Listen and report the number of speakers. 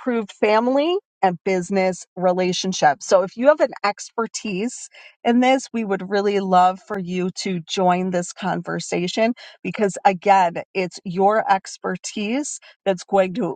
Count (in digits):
1